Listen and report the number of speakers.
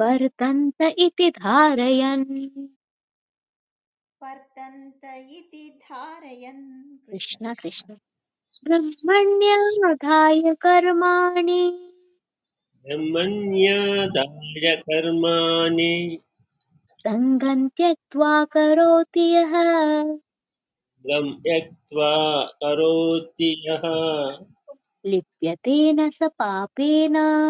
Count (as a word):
three